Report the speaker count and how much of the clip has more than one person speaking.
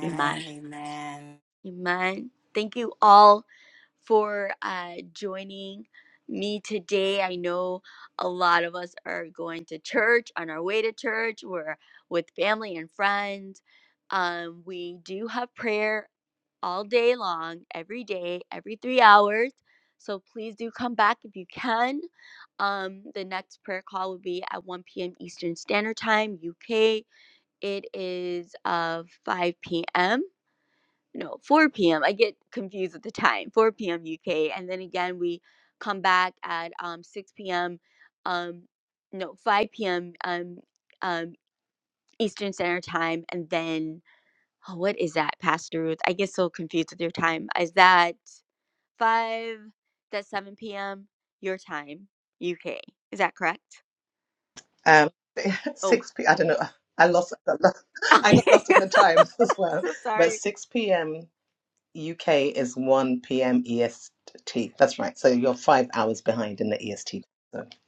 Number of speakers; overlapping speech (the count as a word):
three, about 2%